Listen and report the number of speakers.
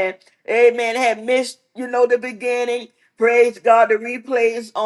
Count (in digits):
1